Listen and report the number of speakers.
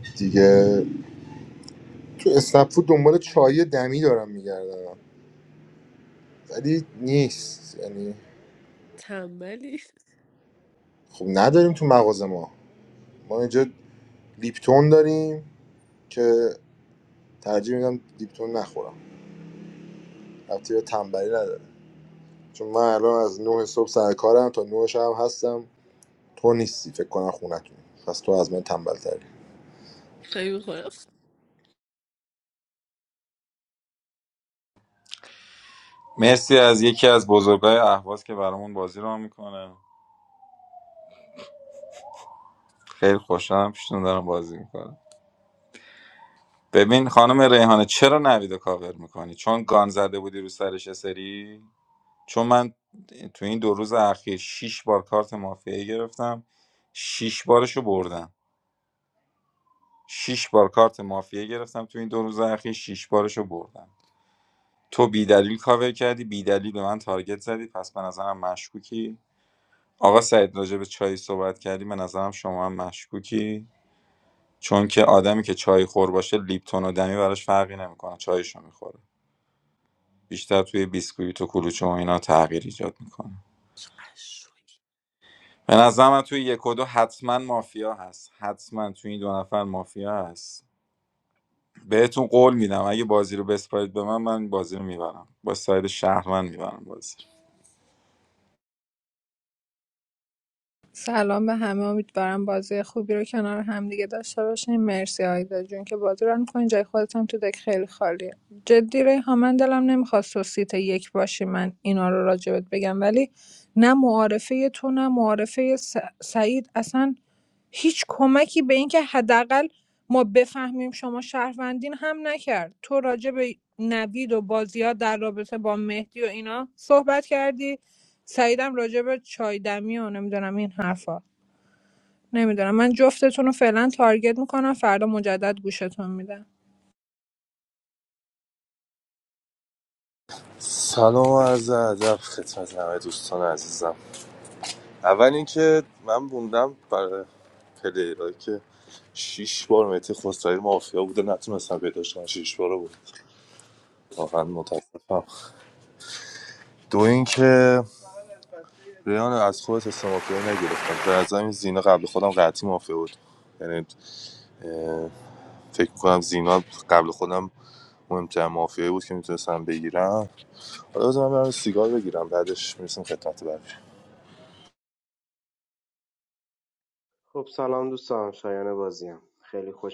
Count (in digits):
6